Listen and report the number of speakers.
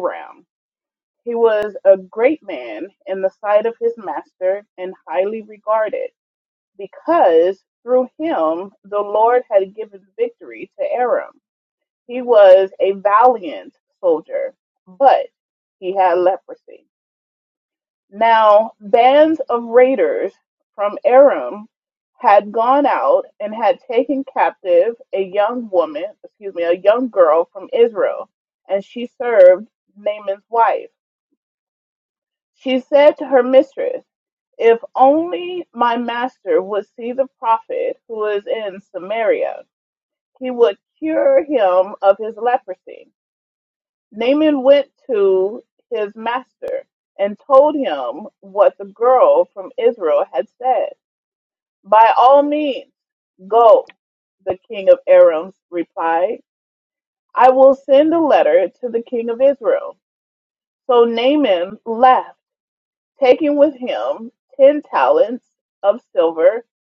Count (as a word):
one